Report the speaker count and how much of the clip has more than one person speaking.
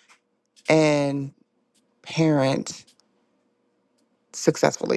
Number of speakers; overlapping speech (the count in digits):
1, no overlap